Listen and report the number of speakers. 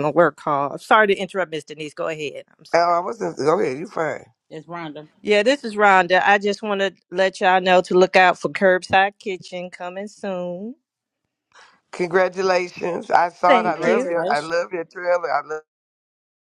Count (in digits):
3